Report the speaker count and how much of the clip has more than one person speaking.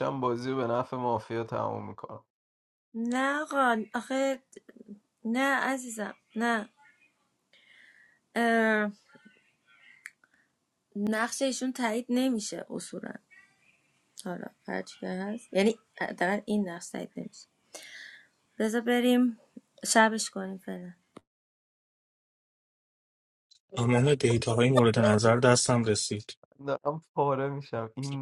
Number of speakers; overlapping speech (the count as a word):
three, no overlap